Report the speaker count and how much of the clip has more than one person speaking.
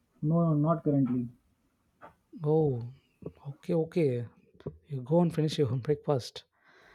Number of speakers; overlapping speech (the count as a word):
two, no overlap